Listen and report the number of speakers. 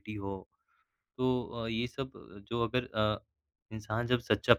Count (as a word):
one